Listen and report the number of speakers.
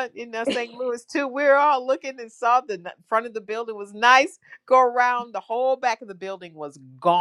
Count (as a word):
one